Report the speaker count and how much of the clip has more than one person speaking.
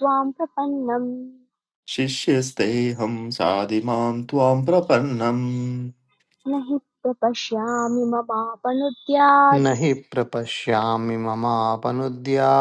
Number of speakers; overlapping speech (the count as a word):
three, no overlap